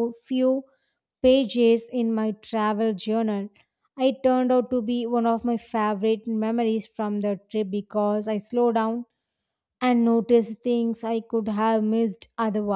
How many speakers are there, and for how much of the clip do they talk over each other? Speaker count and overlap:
1, no overlap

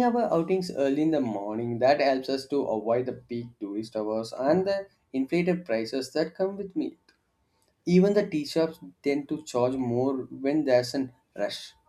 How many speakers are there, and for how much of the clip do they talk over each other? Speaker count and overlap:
1, no overlap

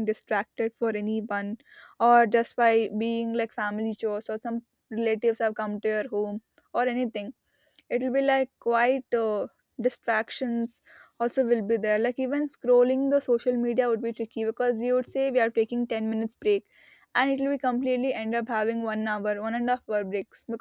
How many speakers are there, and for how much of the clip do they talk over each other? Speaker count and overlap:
1, no overlap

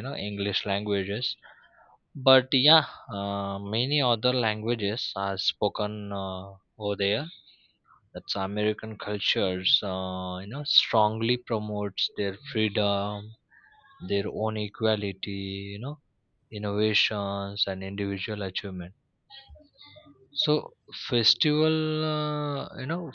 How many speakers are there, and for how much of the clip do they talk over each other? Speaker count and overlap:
1, no overlap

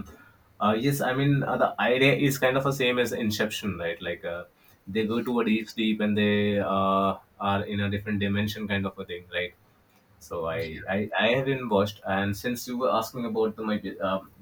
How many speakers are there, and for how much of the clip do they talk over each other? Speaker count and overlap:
1, no overlap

